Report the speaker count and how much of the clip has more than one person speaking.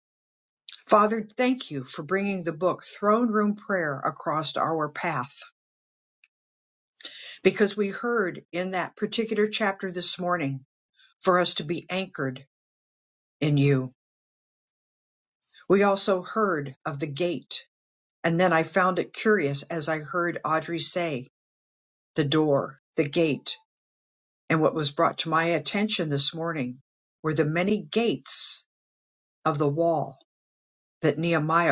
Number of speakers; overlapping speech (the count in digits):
1, no overlap